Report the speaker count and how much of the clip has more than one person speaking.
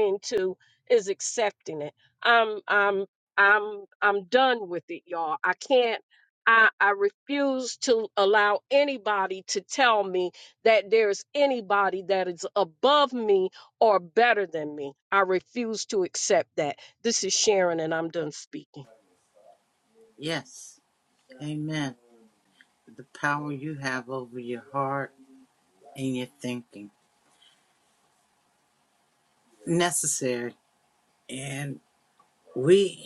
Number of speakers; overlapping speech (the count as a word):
two, no overlap